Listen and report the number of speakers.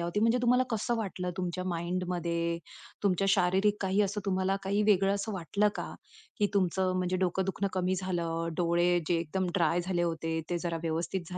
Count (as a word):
one